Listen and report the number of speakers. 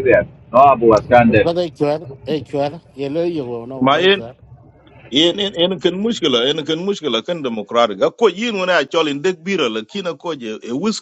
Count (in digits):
3